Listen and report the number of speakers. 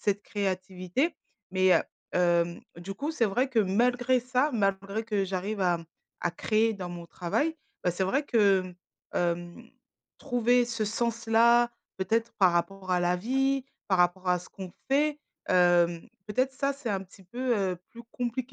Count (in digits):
1